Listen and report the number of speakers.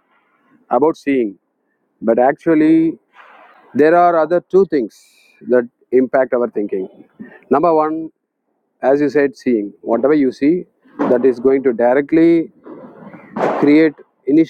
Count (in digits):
1